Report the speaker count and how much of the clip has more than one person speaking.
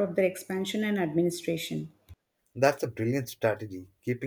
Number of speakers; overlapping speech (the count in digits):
2, no overlap